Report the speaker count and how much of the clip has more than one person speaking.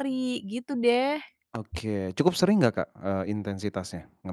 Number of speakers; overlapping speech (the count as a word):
two, no overlap